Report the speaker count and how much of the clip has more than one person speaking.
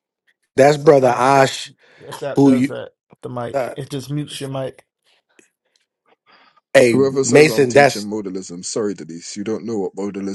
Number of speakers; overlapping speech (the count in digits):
3, about 22%